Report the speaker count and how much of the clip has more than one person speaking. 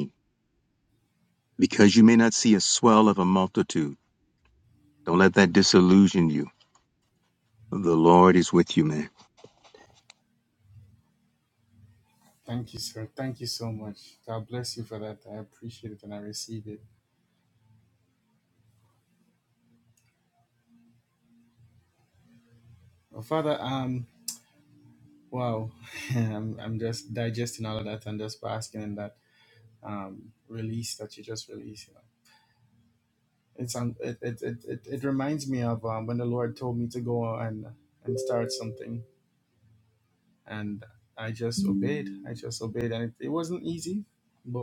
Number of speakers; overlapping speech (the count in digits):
2, no overlap